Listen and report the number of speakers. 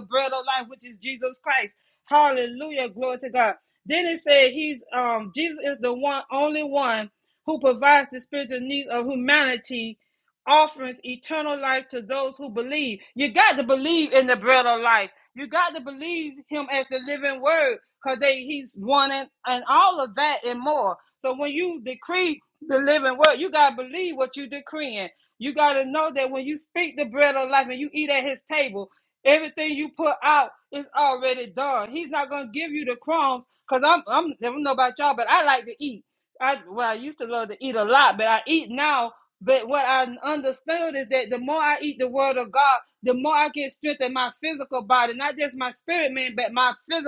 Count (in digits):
1